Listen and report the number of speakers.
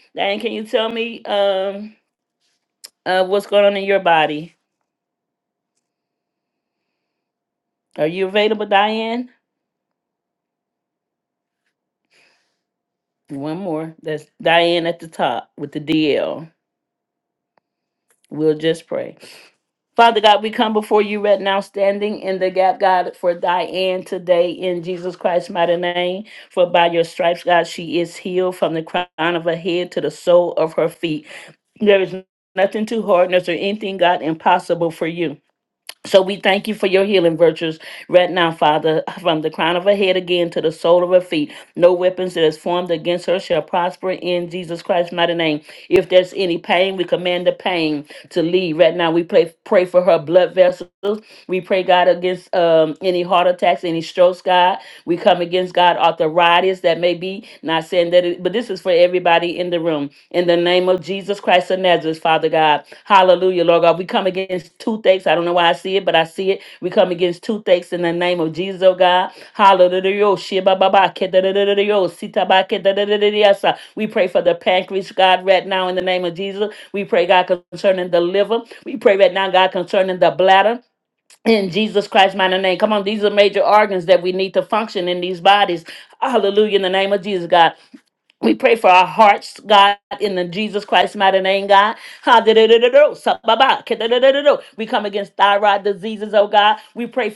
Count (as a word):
one